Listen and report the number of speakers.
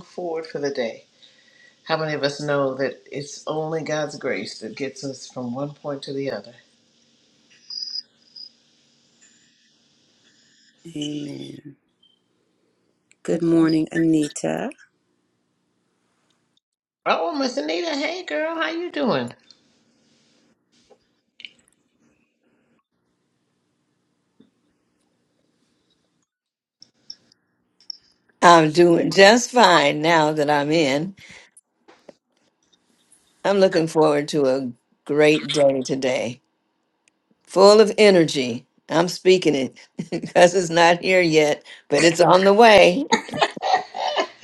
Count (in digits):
3